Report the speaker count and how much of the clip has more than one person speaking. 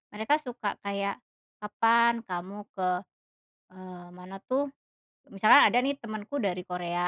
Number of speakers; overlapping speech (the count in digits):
1, no overlap